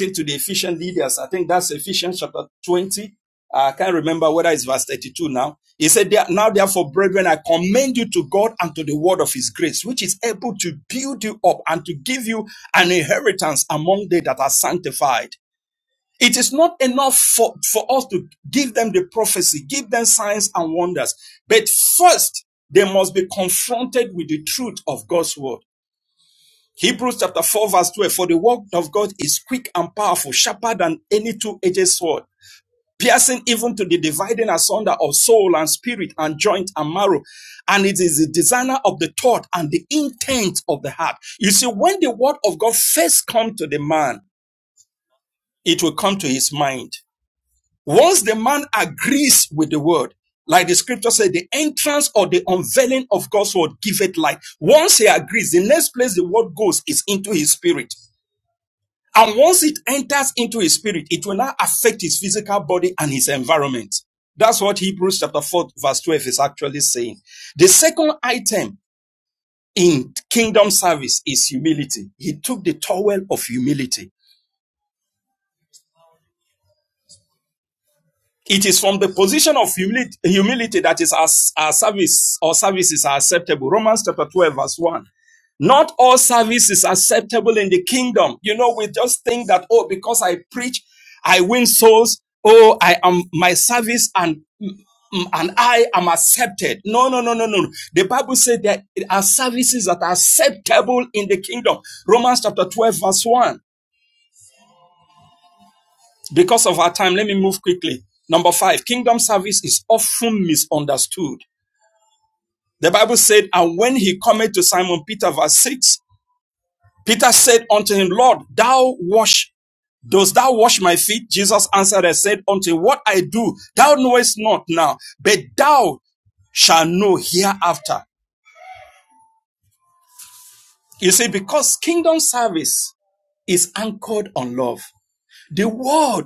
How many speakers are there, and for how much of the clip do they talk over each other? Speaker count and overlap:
one, no overlap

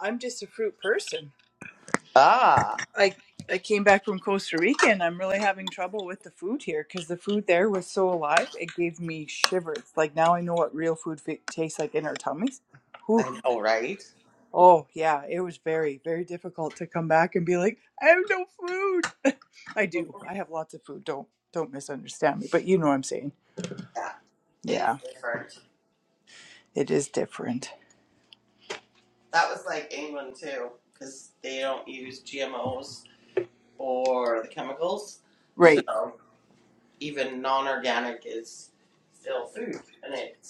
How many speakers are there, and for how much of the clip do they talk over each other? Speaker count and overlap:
two, about 1%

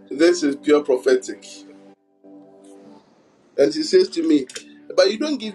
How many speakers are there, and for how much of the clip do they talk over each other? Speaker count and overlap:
one, no overlap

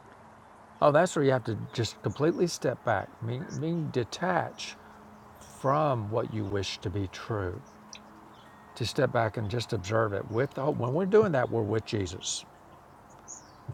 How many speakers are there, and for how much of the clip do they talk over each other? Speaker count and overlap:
one, no overlap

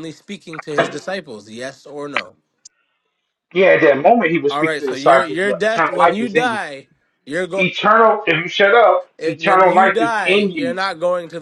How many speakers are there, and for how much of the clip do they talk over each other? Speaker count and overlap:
two, about 31%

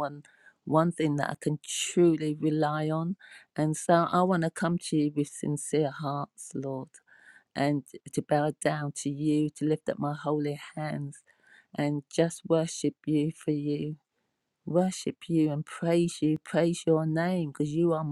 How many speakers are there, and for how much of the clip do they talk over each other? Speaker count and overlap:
one, no overlap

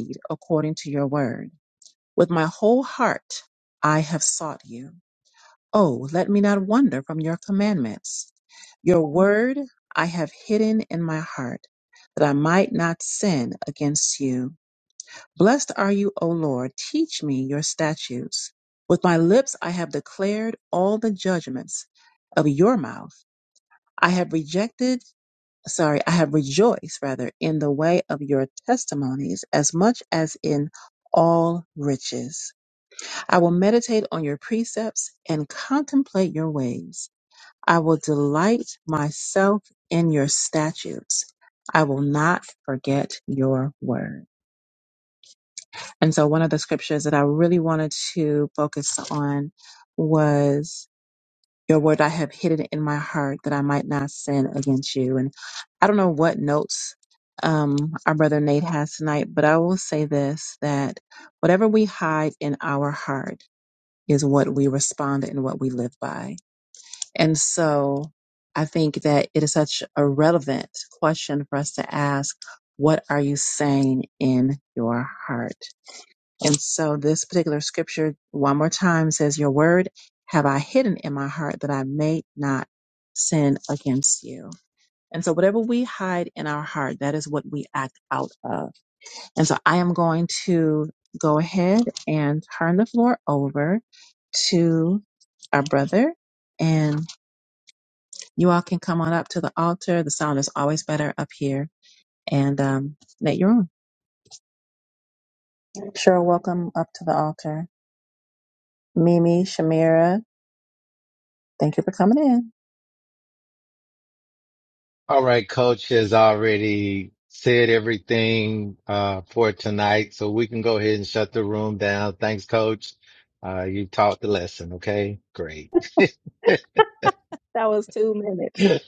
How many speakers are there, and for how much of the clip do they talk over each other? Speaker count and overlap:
two, no overlap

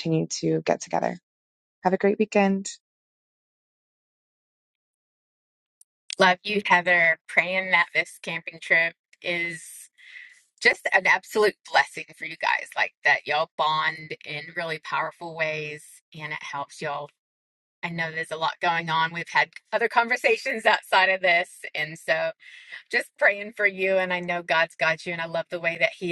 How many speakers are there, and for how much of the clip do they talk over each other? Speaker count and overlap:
two, no overlap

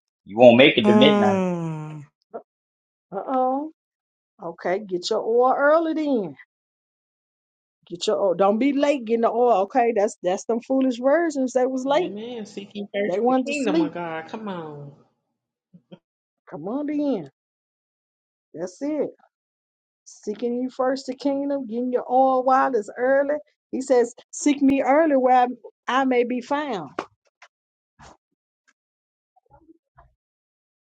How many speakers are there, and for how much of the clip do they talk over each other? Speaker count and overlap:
four, about 5%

